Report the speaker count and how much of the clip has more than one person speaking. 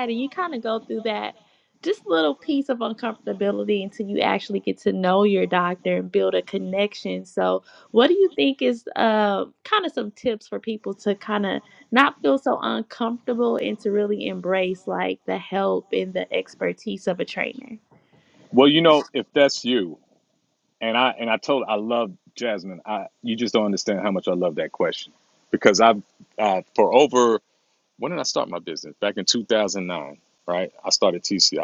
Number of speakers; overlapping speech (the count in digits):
2, no overlap